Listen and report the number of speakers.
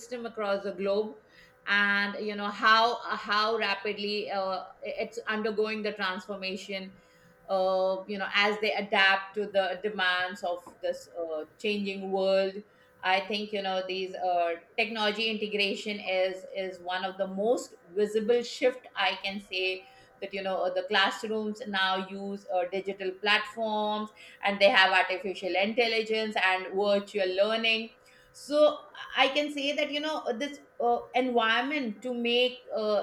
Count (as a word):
one